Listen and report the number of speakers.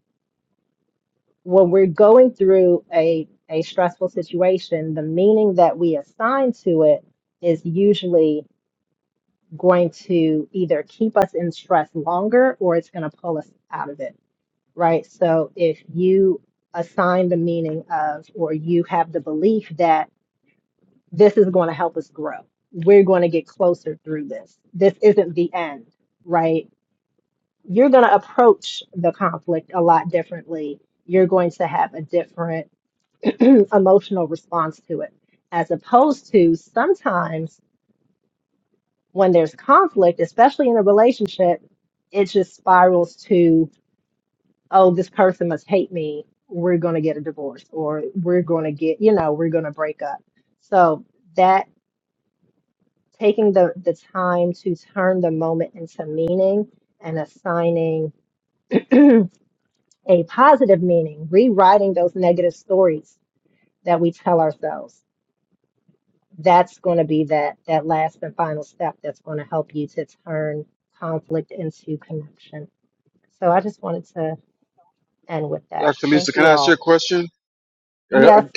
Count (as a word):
two